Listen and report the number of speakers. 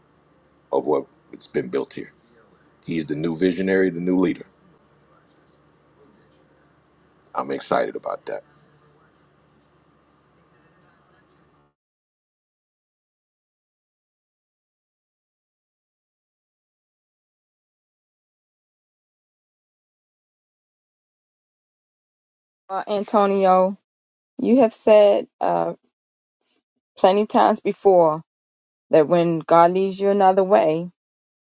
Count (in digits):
2